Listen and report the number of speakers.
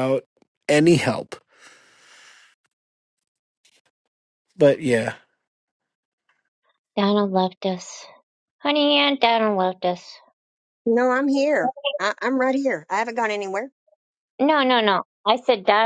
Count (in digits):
3